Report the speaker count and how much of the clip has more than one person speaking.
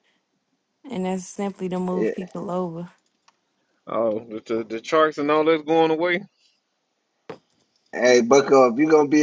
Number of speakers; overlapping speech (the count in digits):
3, about 3%